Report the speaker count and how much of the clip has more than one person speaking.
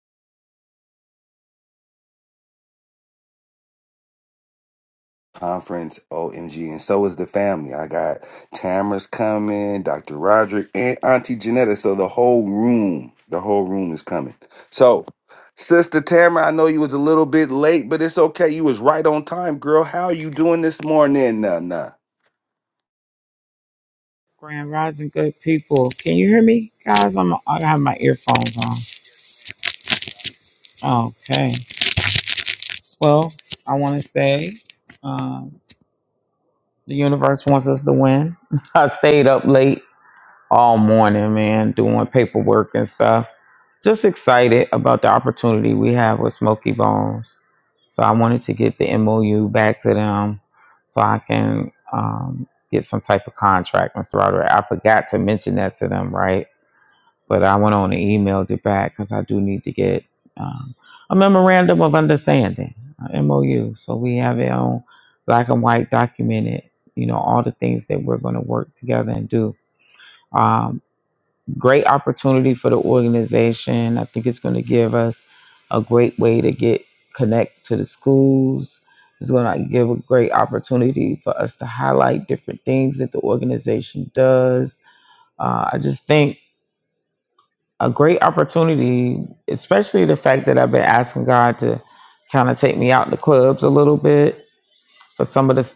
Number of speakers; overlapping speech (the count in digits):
2, no overlap